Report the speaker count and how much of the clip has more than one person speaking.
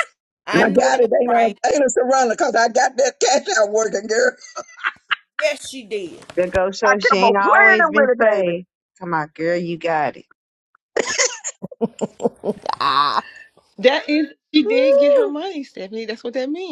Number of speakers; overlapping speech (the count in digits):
4, about 20%